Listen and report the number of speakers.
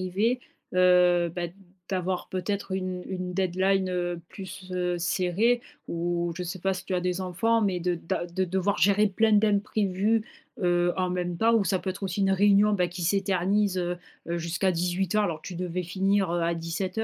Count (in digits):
1